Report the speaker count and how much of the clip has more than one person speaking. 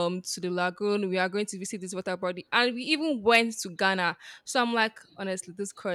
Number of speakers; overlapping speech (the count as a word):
one, no overlap